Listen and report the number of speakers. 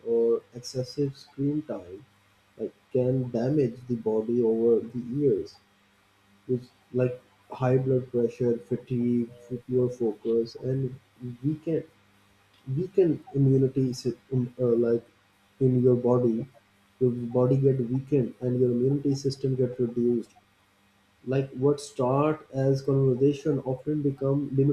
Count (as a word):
one